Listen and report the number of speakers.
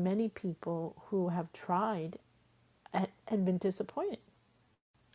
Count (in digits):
1